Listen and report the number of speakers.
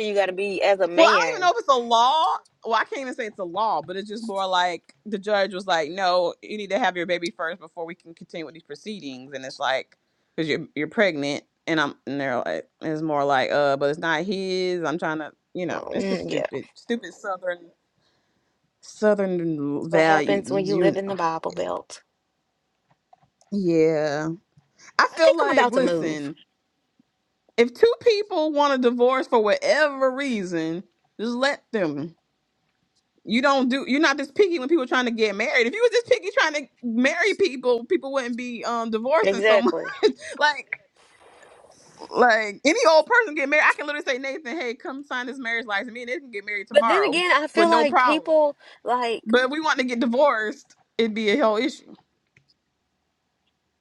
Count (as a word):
two